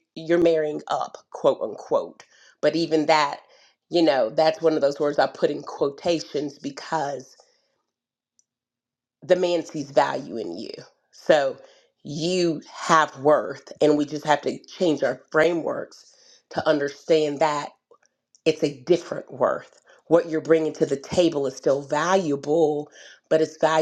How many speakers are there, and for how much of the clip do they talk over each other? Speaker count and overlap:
1, no overlap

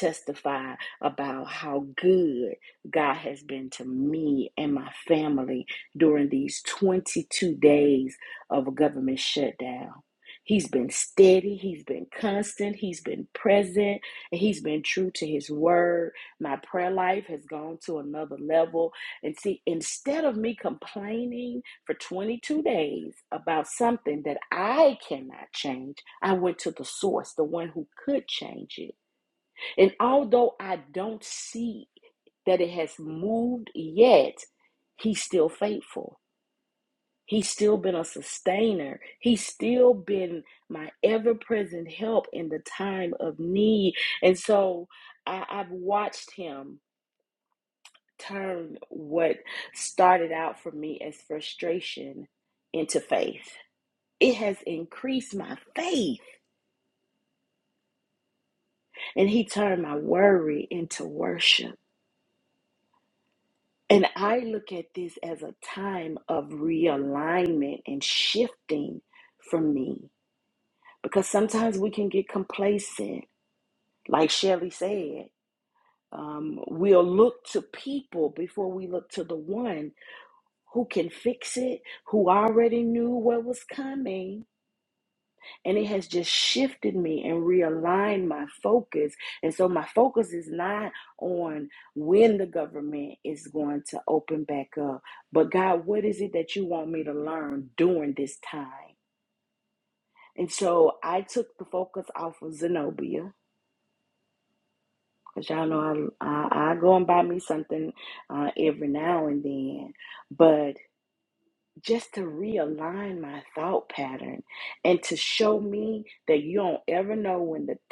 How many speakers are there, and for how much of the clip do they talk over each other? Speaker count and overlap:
1, no overlap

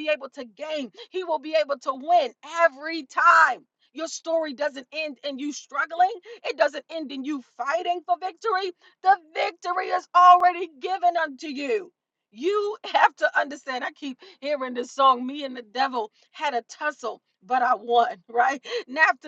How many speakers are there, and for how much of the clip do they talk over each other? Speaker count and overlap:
1, no overlap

